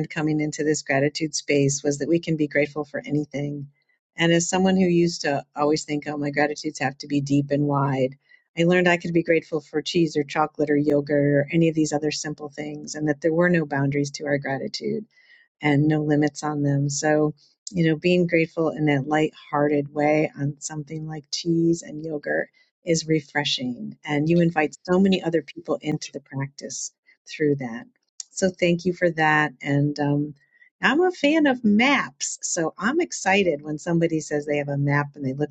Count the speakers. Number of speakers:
1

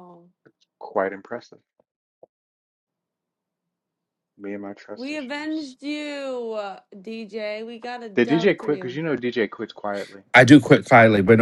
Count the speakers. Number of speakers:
3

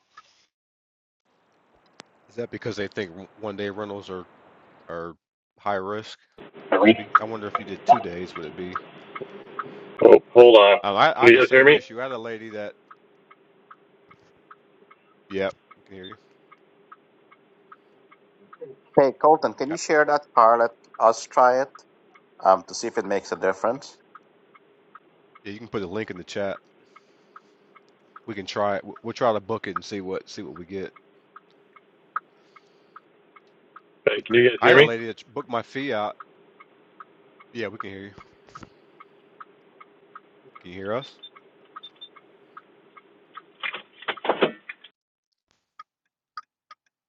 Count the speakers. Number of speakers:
3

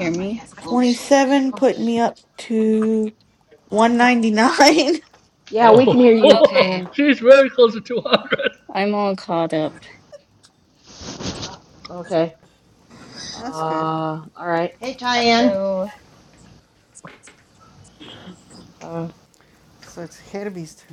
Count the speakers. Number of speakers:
6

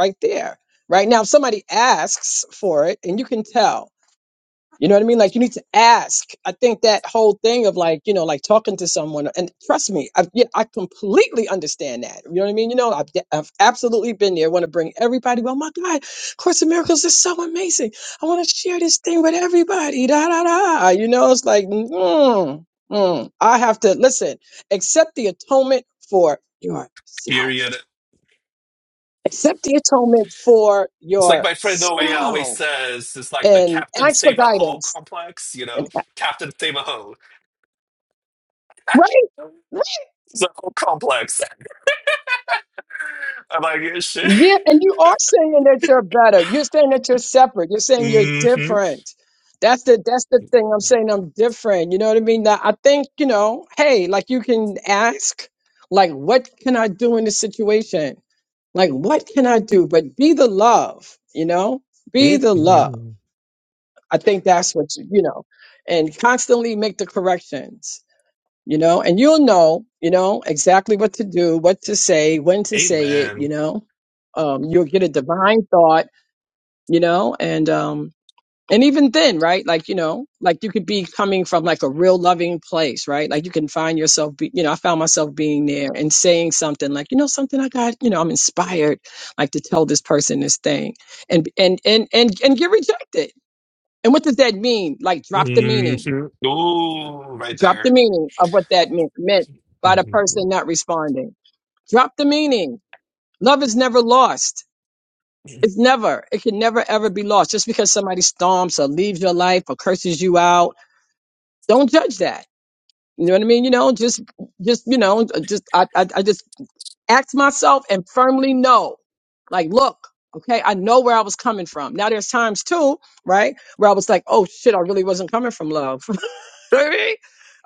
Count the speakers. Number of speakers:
2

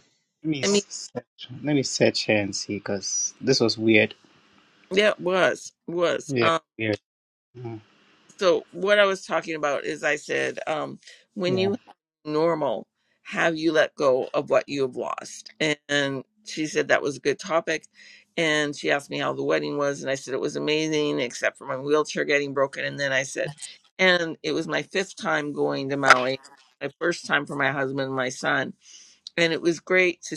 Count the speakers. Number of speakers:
2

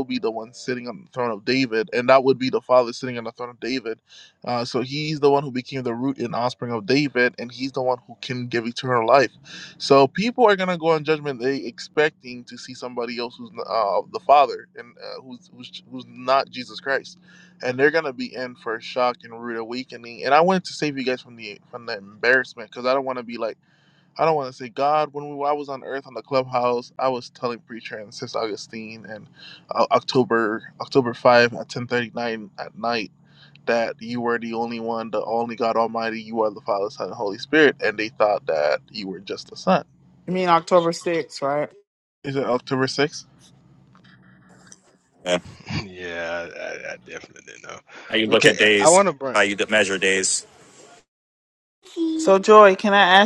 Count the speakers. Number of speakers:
4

